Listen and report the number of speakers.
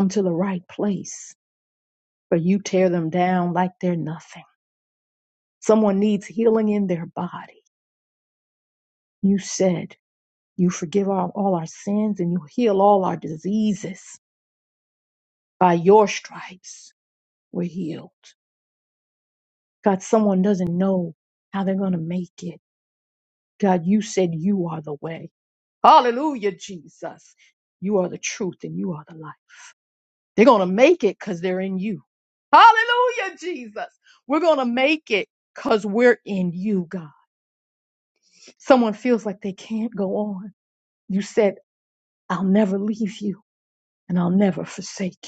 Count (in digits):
1